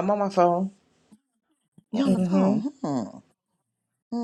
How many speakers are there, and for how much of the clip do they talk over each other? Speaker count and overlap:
two, about 16%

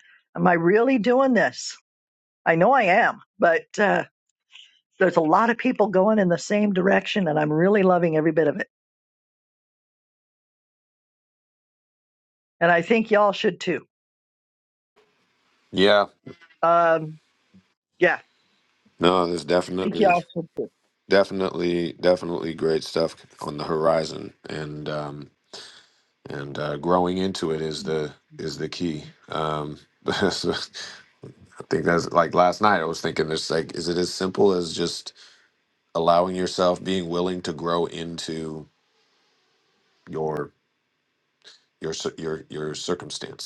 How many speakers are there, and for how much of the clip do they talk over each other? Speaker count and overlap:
two, about 1%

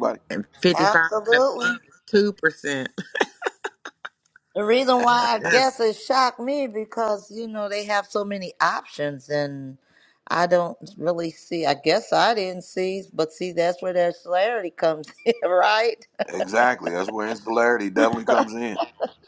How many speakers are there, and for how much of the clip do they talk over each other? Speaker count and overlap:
three, about 7%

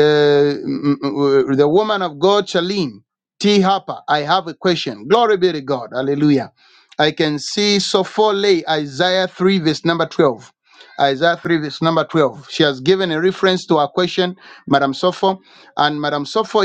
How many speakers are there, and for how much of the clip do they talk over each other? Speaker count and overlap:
one, no overlap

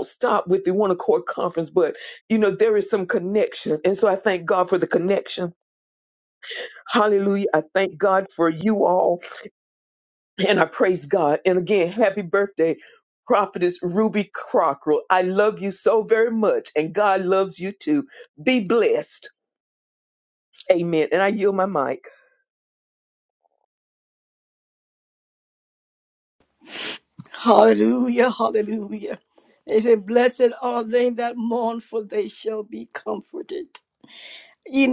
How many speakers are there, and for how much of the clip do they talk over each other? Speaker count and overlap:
two, no overlap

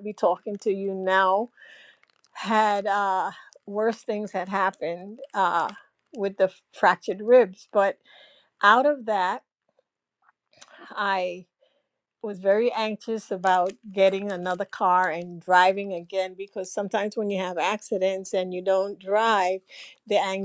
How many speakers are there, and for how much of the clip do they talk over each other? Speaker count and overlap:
one, no overlap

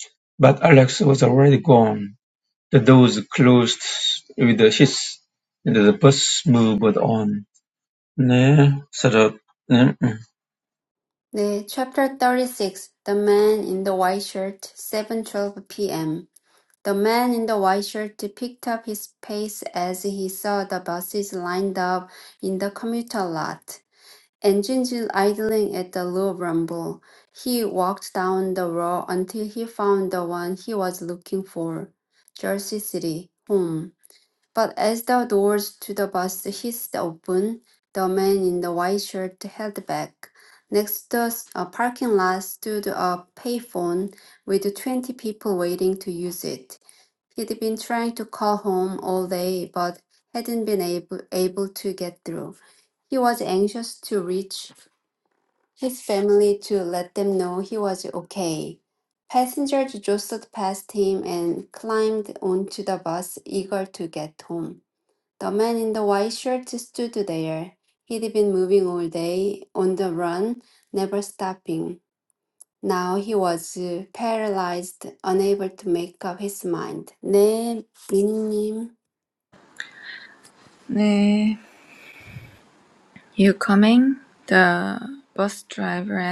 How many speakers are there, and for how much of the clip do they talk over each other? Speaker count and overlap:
three, no overlap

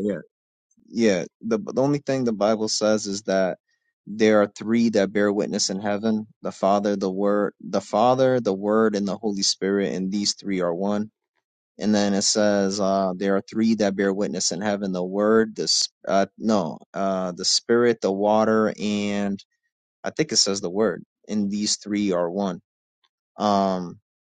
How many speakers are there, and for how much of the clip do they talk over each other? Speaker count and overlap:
one, no overlap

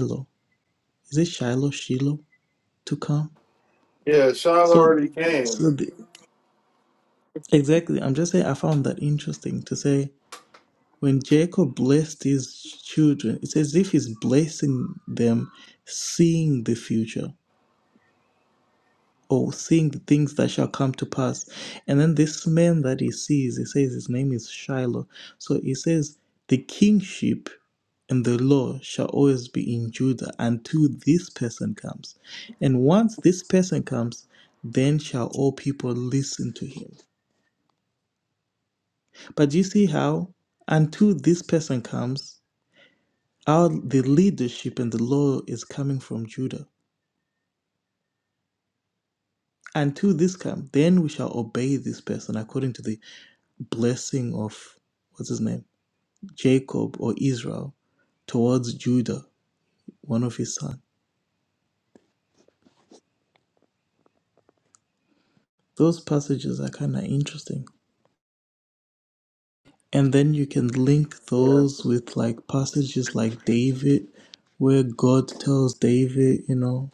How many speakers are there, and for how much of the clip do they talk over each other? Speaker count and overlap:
two, about 1%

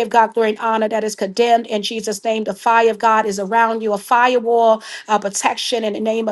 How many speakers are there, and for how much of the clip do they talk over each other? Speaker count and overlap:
one, no overlap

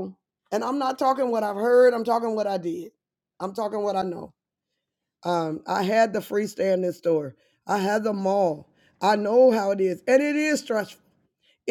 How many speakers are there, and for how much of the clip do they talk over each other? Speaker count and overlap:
one, no overlap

